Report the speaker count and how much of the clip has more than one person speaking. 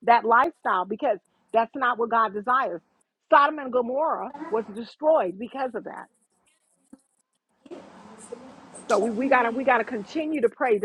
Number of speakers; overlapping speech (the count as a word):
one, no overlap